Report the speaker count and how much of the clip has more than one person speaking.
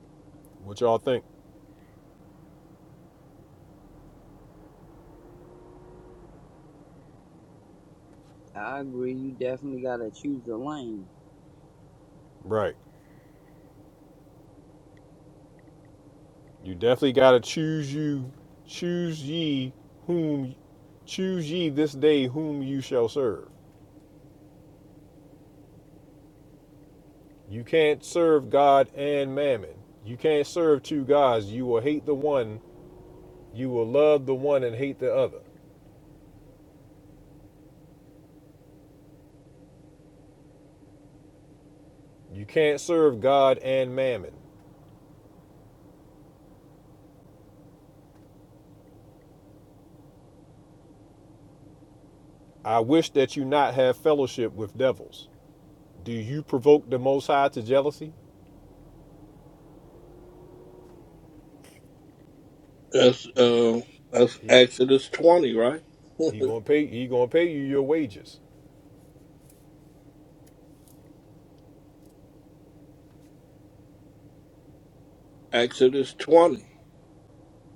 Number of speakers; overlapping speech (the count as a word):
three, under 1%